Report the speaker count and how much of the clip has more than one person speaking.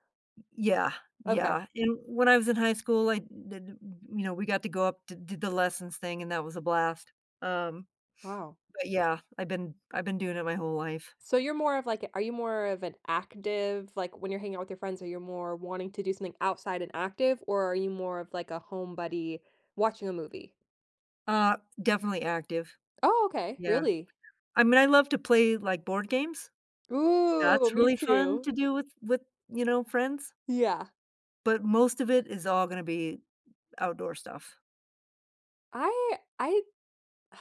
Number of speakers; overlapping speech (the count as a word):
two, about 4%